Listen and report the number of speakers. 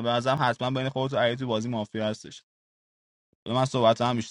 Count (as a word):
one